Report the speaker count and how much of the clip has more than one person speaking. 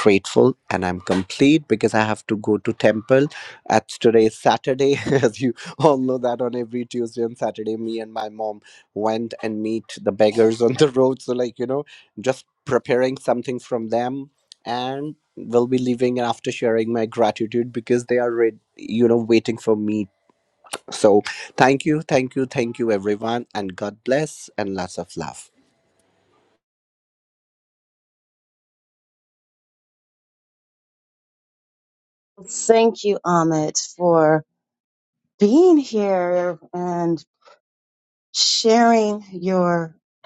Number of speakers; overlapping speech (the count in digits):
2, no overlap